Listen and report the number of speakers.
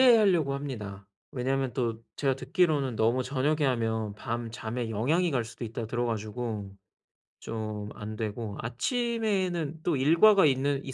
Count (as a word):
one